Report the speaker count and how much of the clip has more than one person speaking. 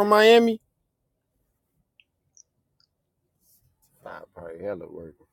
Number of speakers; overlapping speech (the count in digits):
1, no overlap